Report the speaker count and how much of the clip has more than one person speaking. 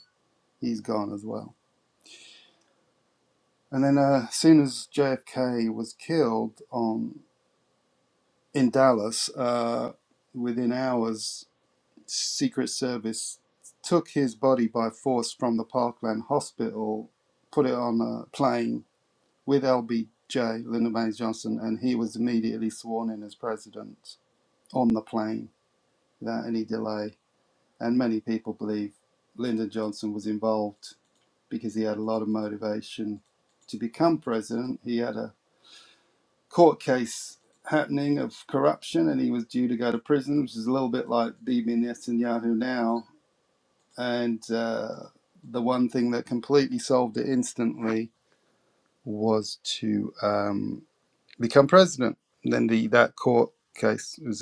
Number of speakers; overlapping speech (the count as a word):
one, no overlap